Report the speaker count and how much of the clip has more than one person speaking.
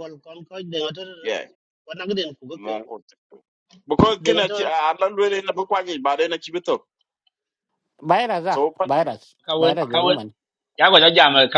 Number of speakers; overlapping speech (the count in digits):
4, about 15%